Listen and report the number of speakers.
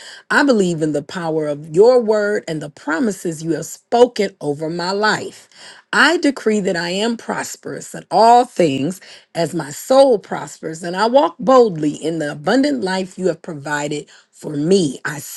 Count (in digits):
1